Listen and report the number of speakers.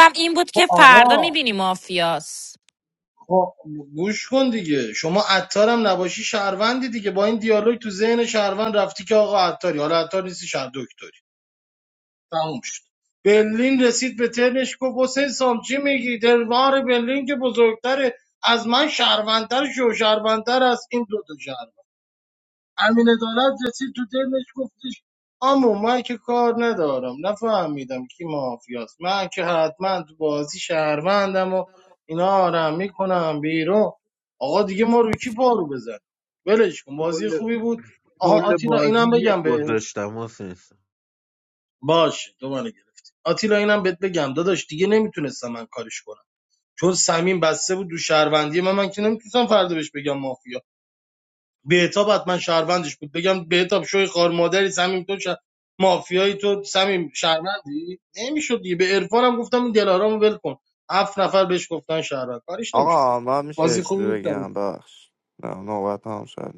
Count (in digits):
4